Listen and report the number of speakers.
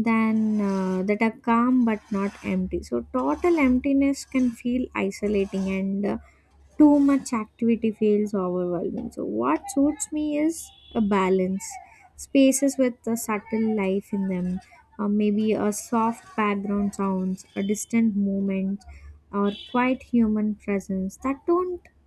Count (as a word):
one